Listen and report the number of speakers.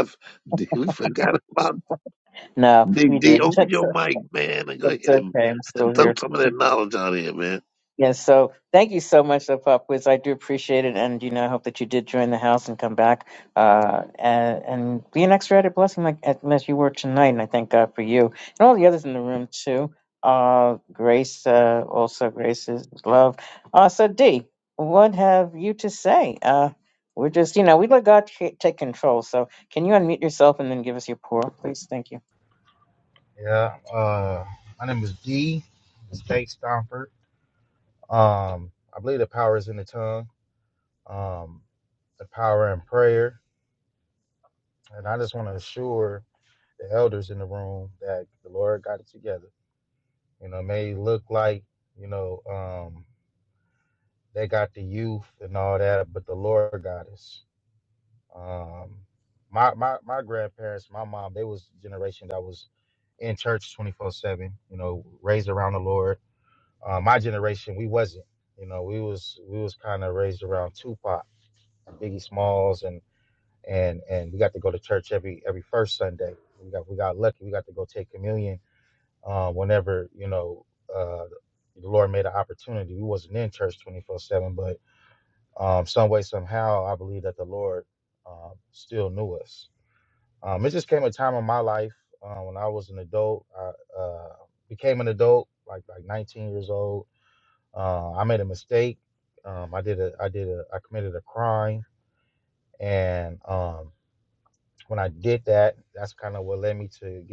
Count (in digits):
3